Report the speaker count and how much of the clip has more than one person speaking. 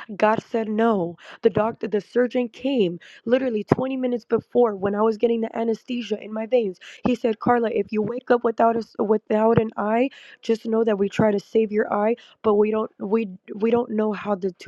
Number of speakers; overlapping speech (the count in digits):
1, no overlap